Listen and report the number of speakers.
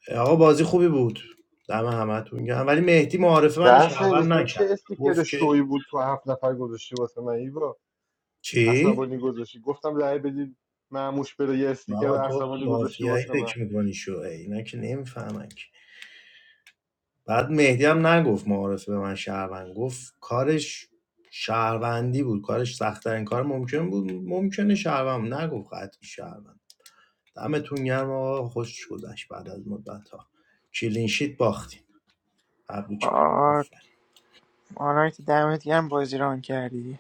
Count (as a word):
three